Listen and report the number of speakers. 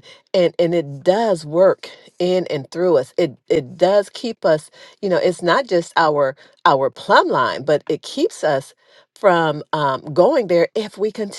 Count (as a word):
one